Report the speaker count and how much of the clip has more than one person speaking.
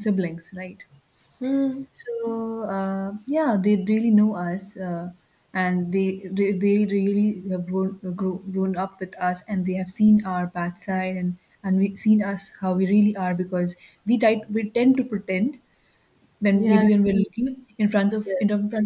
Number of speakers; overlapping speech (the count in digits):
2, about 3%